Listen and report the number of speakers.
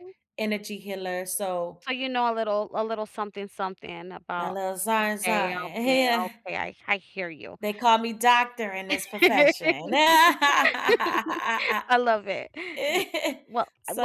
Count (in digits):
2